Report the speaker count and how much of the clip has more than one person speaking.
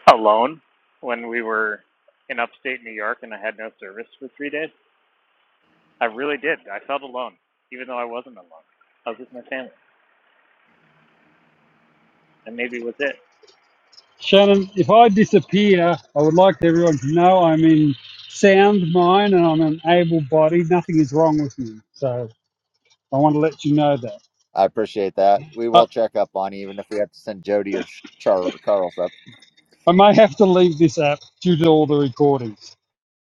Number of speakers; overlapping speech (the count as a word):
three, under 1%